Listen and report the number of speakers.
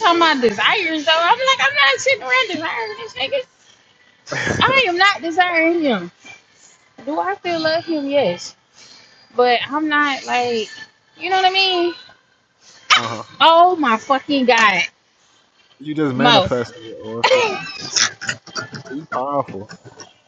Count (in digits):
2